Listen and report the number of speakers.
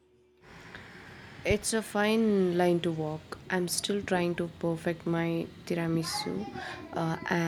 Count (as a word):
one